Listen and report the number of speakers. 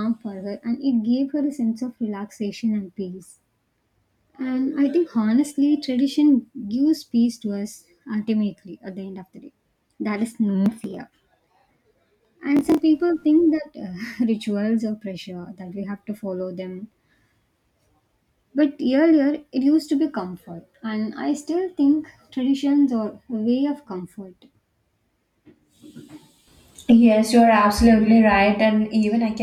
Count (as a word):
two